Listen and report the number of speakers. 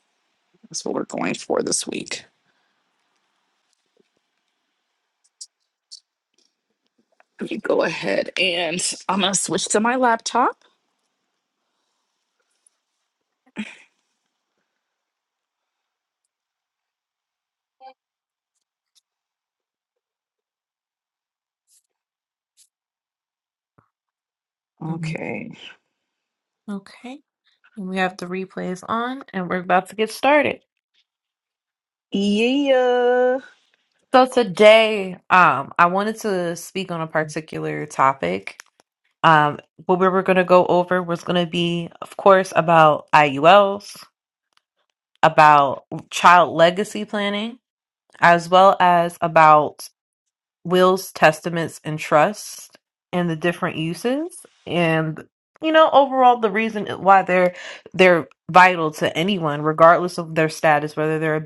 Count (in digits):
2